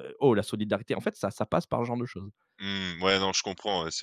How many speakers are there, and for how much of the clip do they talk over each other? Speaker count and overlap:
2, no overlap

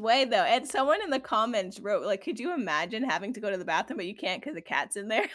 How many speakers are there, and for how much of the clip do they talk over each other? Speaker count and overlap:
1, no overlap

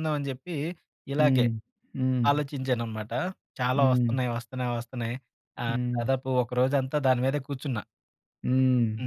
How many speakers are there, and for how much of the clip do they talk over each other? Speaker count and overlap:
2, about 13%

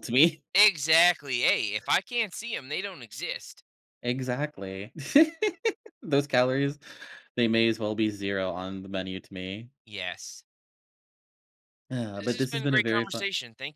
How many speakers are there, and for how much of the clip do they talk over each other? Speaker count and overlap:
2, about 7%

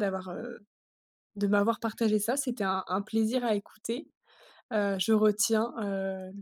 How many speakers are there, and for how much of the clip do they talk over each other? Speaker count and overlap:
1, no overlap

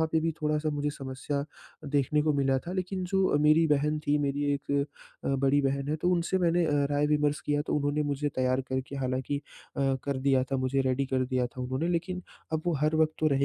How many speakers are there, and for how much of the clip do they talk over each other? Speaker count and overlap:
1, no overlap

